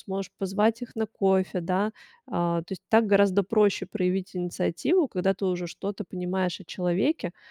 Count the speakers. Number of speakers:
one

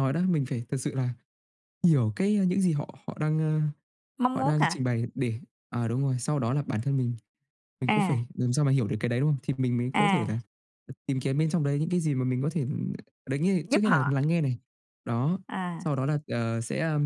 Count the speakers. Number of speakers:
two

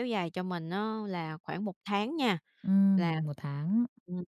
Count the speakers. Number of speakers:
two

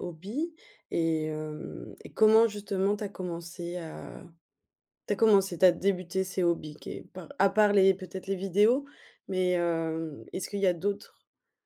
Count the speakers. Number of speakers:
one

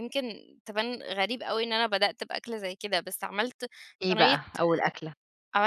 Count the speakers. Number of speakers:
two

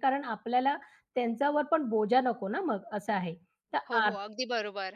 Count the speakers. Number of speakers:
two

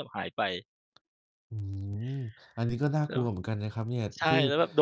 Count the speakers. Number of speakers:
two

